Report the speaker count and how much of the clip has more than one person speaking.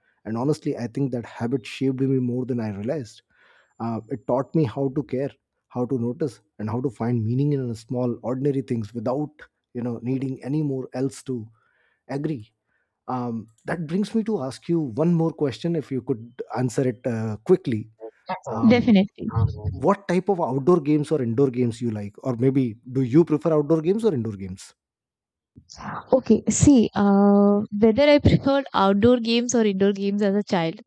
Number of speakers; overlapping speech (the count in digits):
2, about 1%